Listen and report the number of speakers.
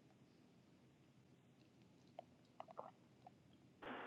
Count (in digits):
0